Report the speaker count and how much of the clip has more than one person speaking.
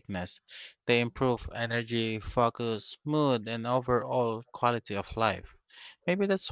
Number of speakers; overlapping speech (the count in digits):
1, no overlap